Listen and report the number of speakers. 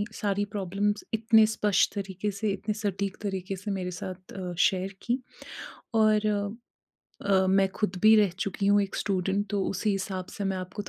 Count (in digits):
1